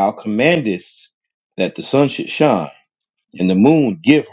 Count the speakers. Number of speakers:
one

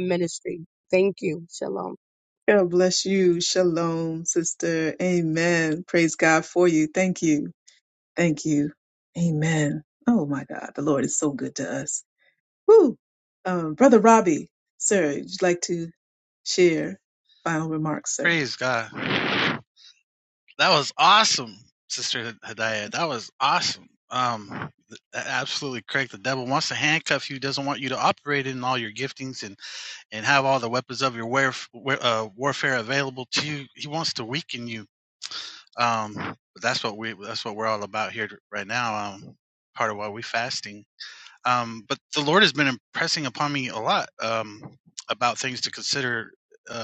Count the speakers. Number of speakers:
three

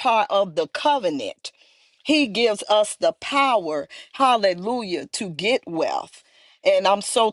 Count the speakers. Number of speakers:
one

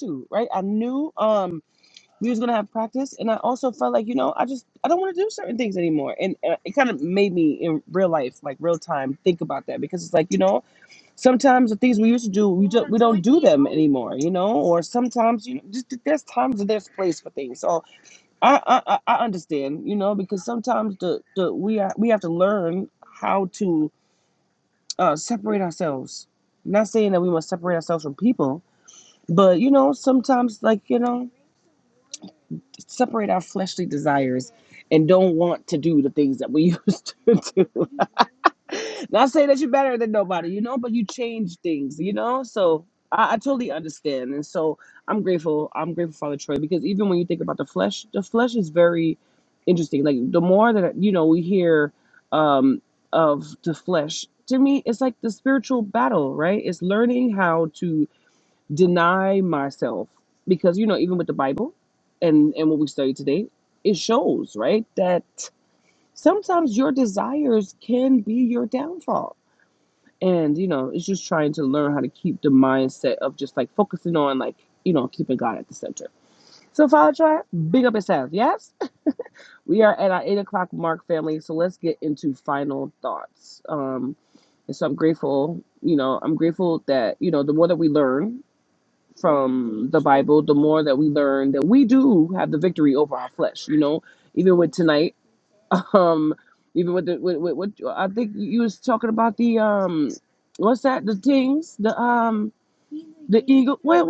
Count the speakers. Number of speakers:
one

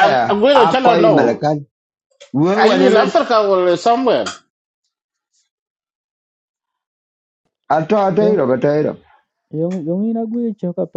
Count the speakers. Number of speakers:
three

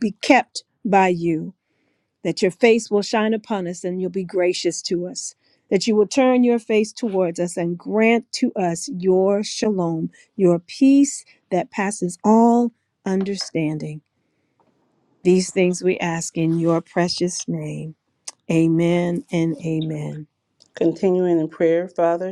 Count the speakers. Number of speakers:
two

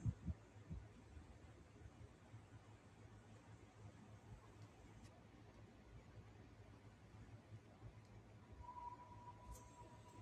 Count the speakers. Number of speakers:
zero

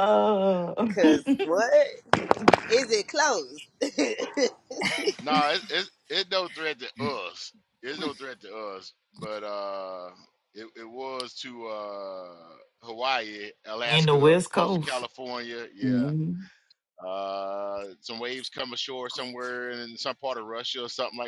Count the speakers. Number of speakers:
three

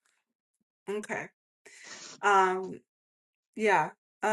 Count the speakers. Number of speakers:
one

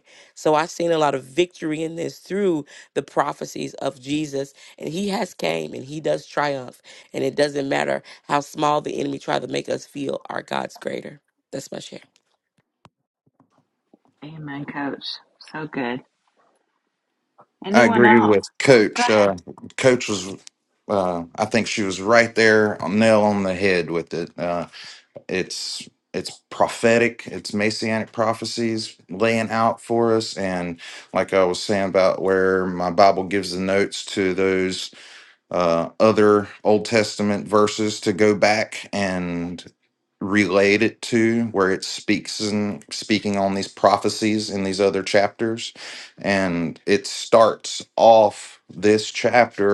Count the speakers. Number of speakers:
three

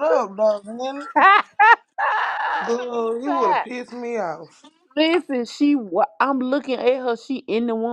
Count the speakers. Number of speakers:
two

